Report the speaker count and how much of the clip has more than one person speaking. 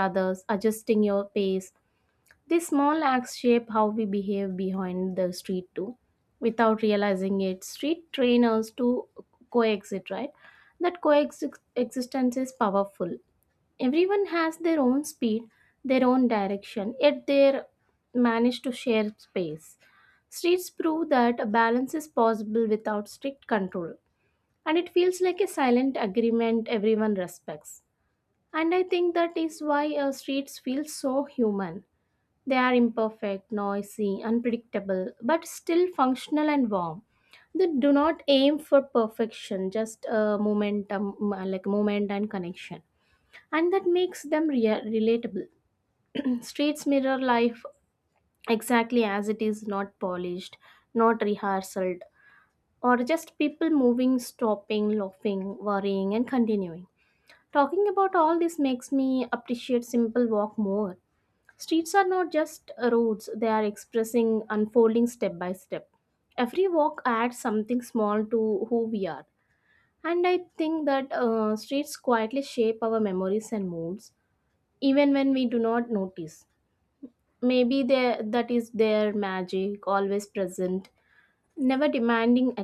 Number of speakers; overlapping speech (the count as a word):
one, no overlap